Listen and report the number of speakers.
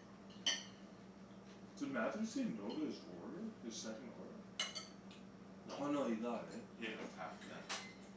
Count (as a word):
two